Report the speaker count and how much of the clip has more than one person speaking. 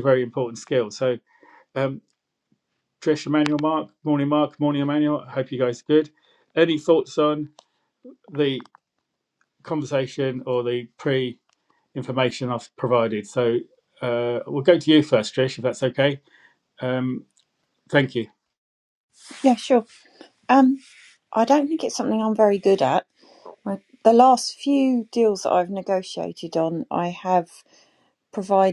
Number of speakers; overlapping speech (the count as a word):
two, no overlap